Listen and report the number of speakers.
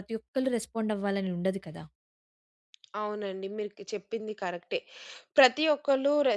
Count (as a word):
two